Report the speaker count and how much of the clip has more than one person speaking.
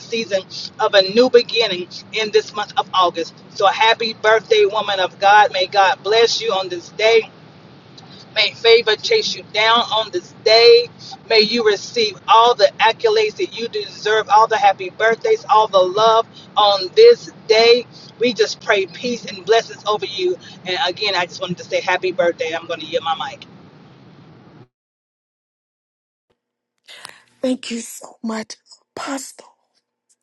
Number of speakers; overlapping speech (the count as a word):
two, no overlap